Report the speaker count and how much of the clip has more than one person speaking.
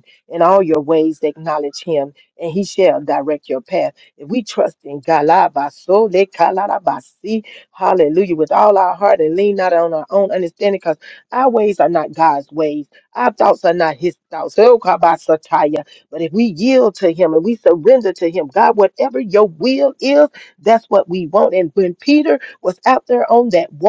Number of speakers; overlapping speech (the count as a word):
one, no overlap